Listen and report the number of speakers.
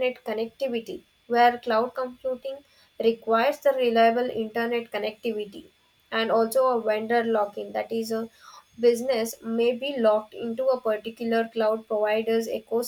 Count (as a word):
one